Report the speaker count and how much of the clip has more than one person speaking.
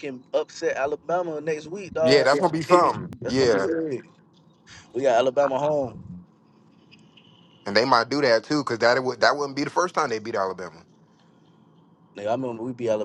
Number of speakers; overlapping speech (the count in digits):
2, about 13%